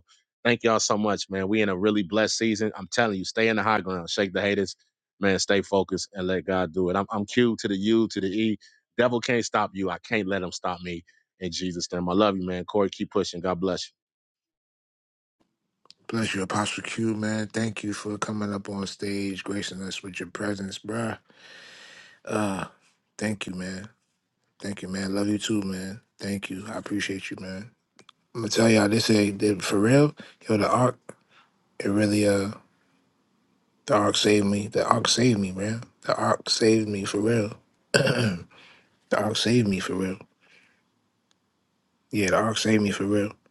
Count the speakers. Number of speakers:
two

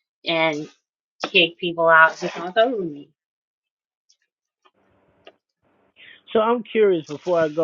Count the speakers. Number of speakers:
two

